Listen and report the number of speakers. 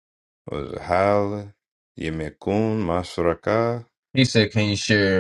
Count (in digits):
2